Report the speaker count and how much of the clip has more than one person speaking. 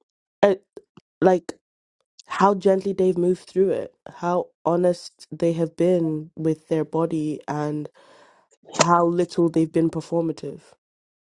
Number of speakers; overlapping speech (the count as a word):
one, no overlap